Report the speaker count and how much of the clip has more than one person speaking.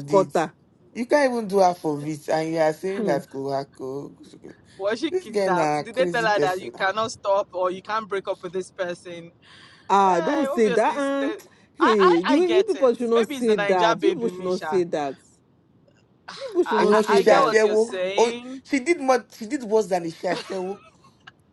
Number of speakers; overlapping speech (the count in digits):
3, about 38%